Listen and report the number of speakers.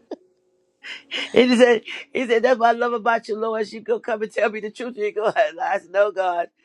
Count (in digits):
1